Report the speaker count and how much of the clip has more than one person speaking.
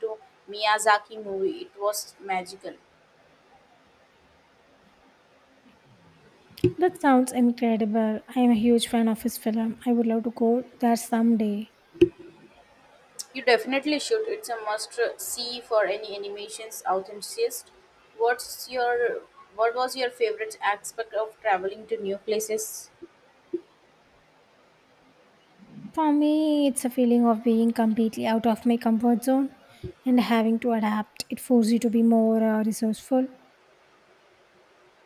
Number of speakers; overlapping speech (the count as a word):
two, no overlap